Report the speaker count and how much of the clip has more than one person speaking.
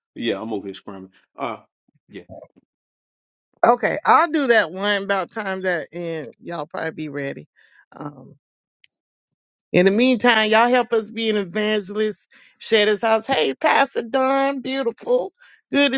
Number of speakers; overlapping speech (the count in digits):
2, no overlap